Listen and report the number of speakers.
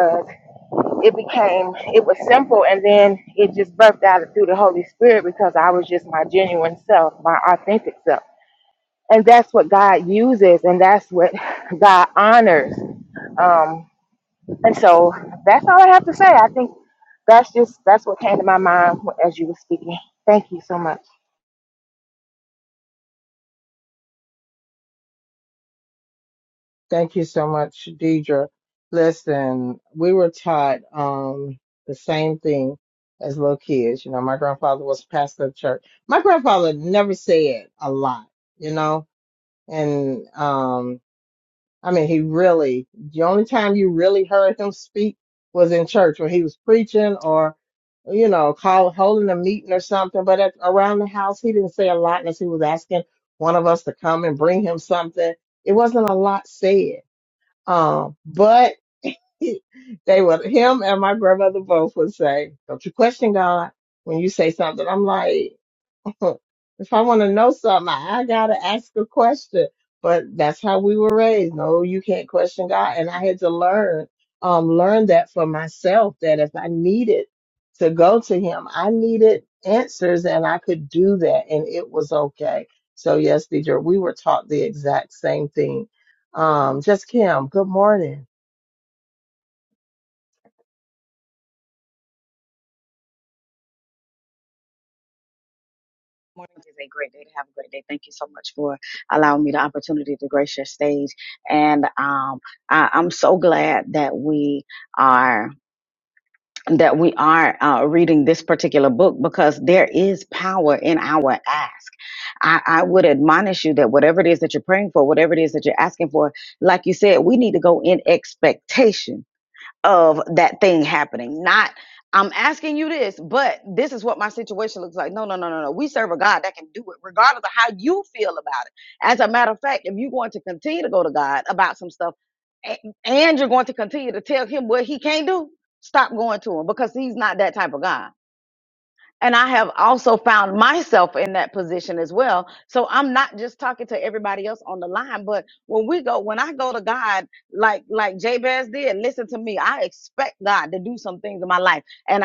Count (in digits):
3